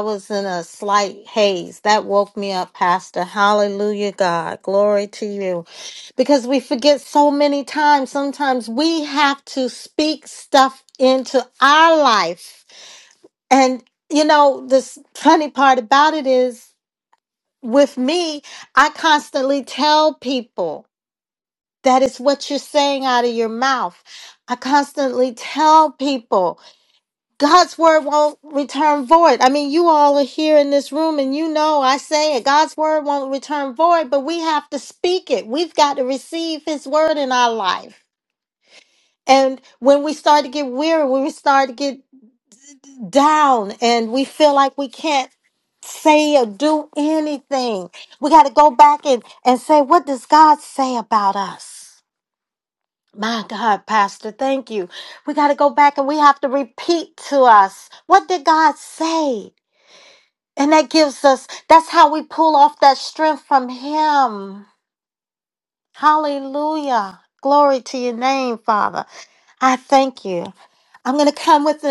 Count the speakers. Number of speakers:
one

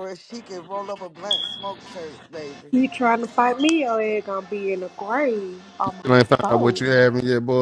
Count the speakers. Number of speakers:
three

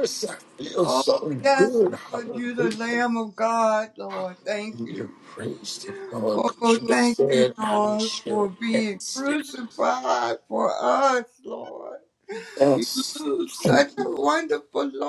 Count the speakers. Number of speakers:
two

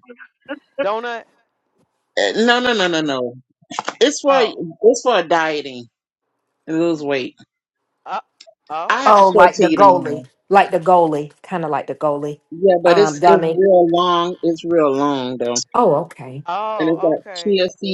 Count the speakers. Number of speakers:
three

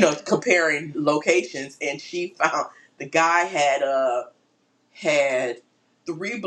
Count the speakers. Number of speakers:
one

